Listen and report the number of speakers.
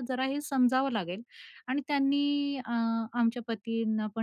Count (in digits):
1